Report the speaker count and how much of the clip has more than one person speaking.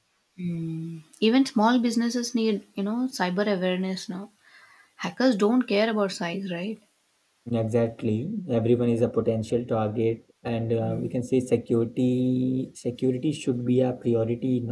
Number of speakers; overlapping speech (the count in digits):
2, no overlap